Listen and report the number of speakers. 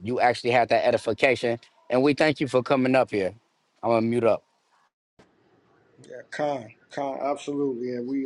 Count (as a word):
two